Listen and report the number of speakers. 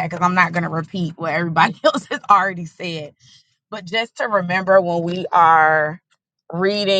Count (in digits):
1